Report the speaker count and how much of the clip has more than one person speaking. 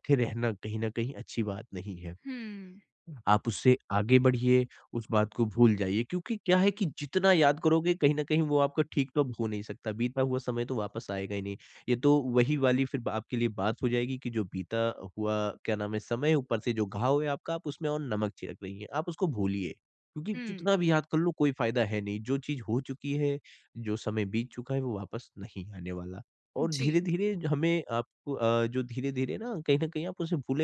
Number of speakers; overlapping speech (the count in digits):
2, about 2%